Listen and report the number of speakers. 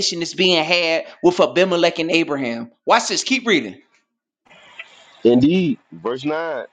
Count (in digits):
2